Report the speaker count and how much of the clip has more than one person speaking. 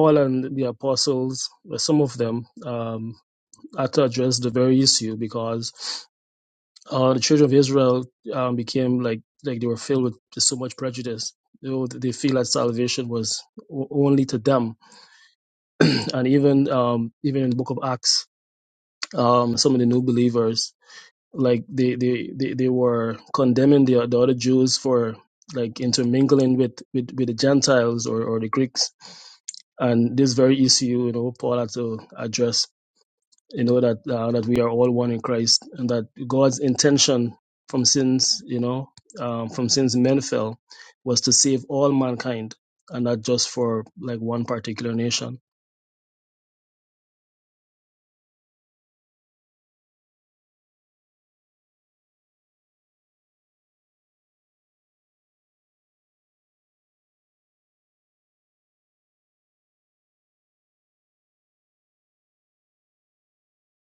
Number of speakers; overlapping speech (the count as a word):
one, no overlap